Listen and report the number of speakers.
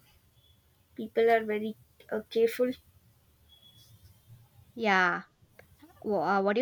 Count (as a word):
two